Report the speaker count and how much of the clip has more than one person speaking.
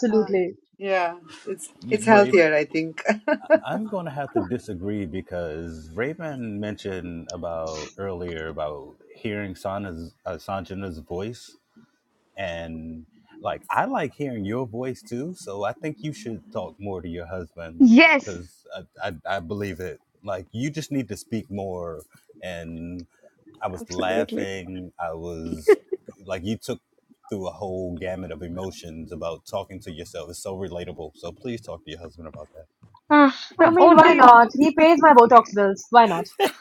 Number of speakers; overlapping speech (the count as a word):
four, about 6%